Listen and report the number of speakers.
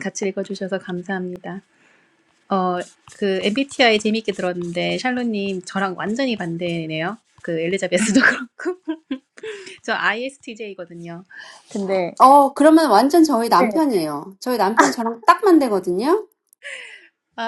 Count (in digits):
2